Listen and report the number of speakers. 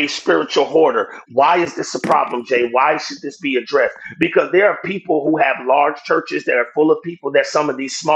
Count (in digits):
1